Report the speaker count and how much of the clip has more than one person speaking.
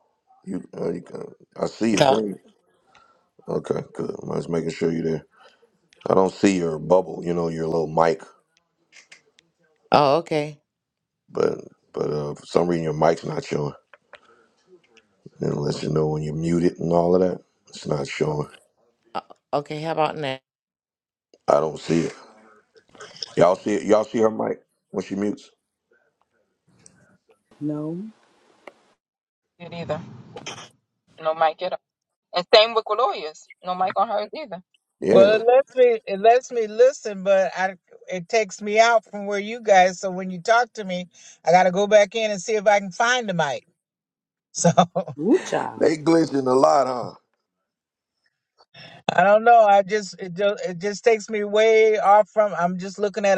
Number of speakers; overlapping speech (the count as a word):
five, about 1%